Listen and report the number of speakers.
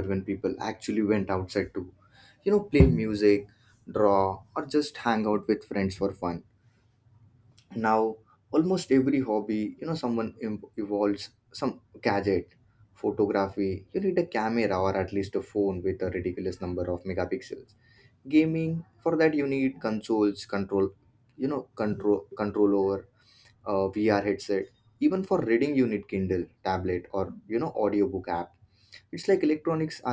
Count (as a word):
one